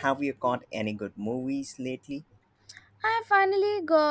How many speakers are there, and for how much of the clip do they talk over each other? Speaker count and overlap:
2, no overlap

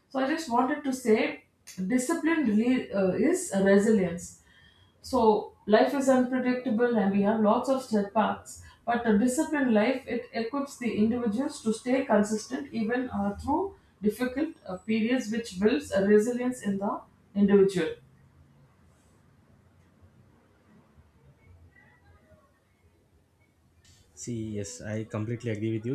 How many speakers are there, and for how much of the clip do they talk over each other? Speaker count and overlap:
2, no overlap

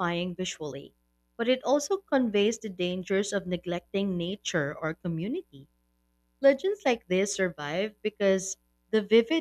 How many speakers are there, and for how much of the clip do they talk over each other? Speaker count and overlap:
1, no overlap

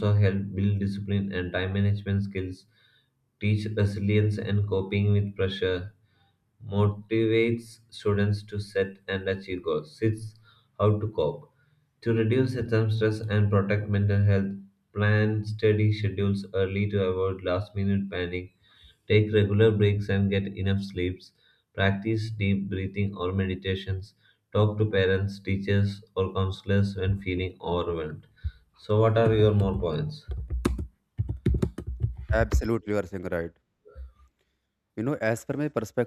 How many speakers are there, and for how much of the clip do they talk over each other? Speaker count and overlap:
2, no overlap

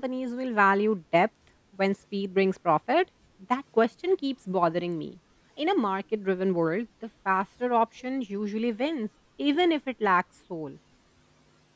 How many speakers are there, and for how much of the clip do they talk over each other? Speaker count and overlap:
1, no overlap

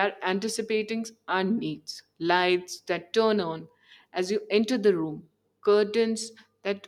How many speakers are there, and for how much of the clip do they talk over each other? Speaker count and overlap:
1, no overlap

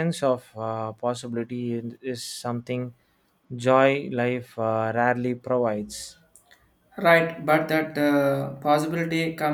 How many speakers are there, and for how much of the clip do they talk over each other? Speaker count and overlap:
2, no overlap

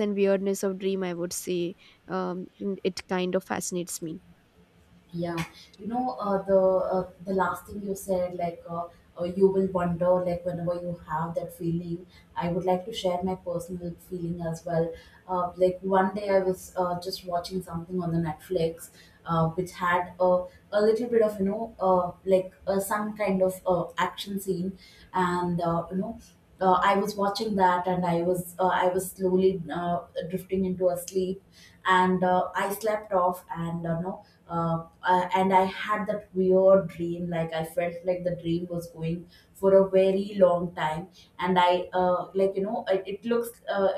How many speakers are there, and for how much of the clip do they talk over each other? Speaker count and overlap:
2, no overlap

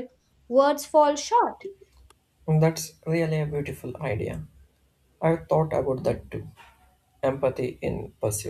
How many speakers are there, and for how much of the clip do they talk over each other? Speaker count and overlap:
2, no overlap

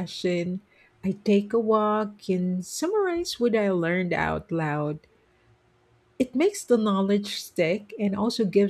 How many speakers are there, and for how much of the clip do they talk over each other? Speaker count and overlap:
1, no overlap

